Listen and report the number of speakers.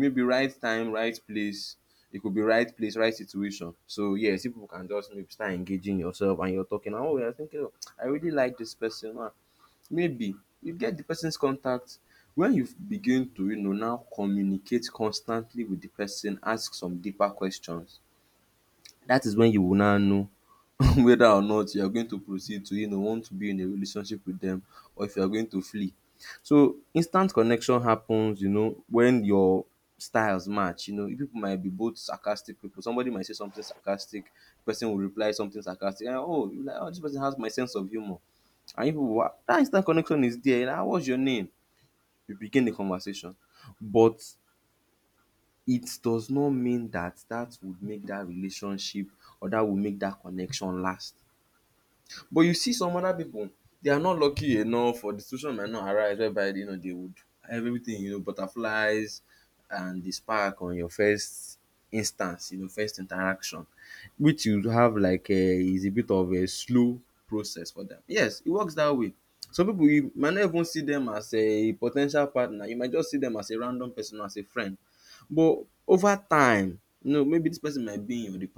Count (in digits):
1